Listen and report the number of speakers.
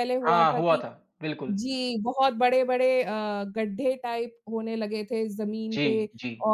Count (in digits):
2